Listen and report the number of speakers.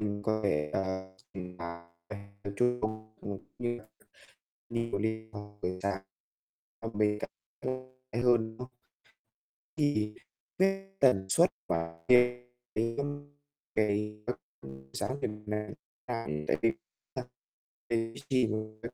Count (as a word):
one